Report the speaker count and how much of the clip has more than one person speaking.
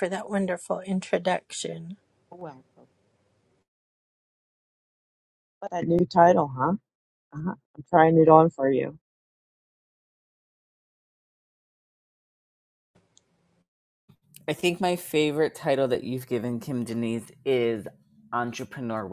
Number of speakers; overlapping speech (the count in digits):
3, no overlap